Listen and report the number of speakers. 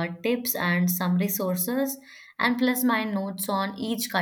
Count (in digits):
1